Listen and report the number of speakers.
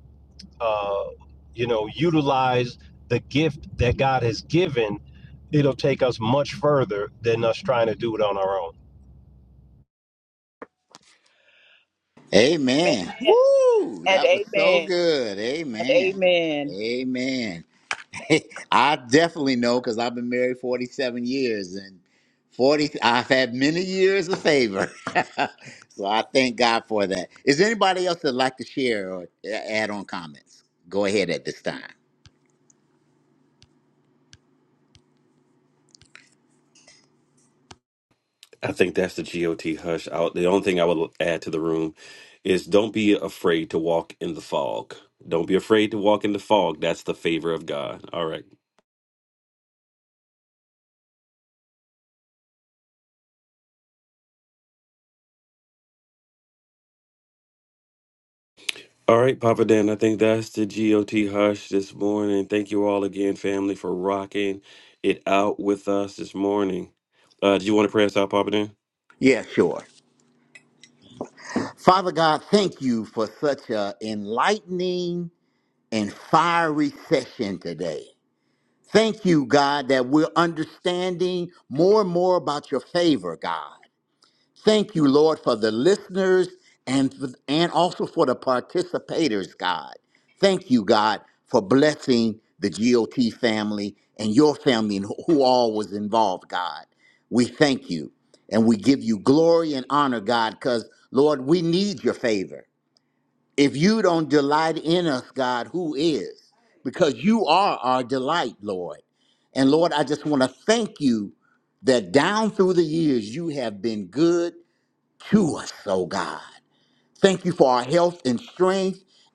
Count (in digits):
4